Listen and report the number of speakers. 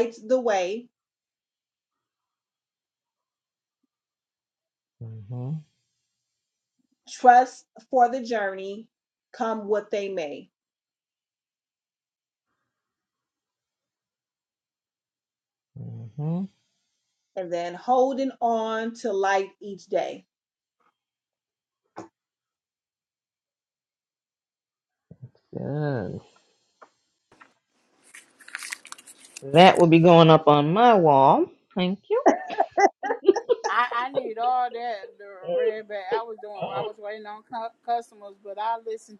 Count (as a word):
three